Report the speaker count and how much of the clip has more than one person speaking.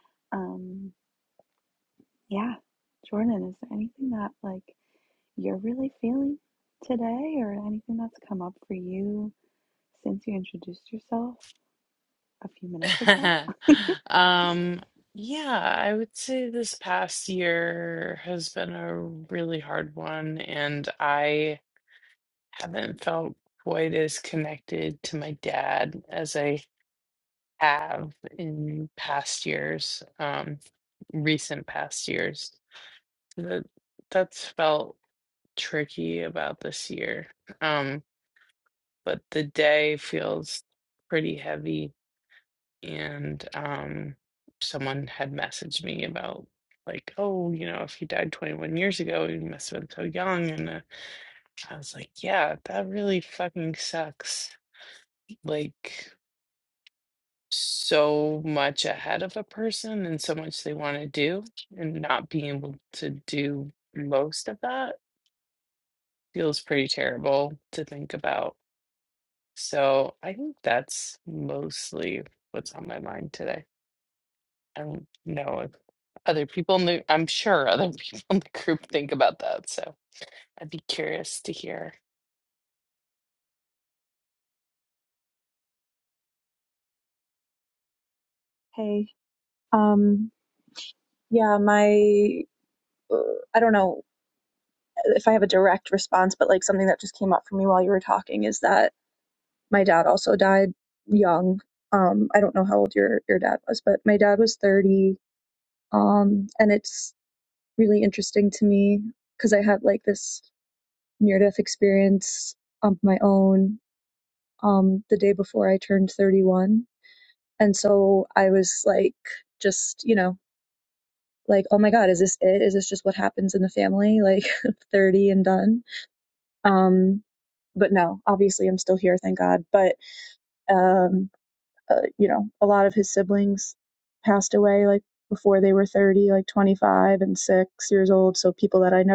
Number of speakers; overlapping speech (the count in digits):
3, no overlap